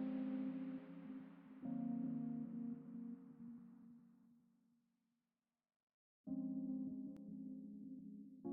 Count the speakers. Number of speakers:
0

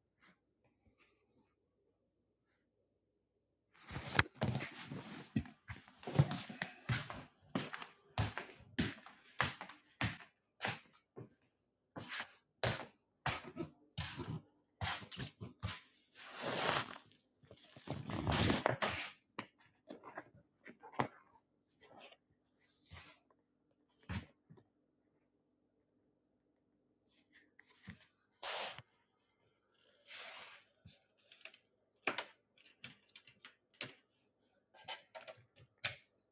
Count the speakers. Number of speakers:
0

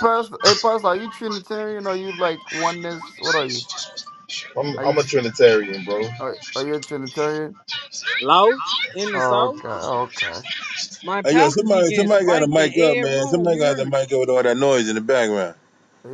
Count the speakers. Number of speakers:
4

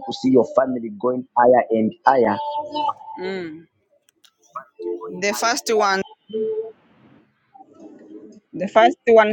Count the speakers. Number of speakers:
2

